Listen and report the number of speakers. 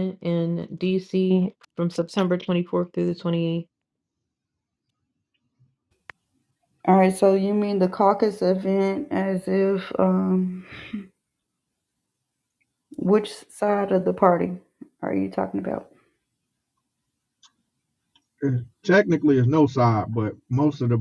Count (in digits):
3